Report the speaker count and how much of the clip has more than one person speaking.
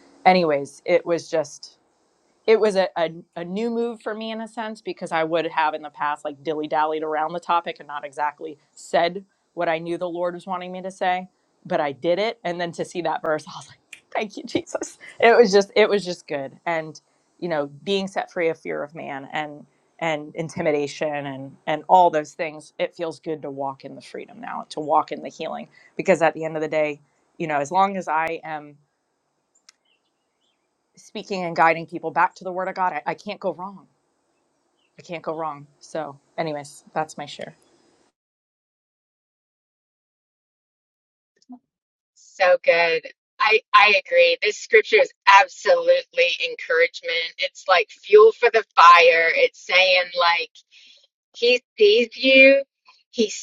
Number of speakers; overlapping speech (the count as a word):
two, no overlap